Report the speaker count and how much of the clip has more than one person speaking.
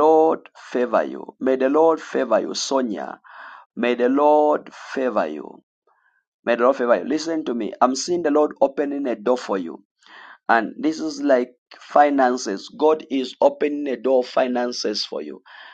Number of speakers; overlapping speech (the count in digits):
1, no overlap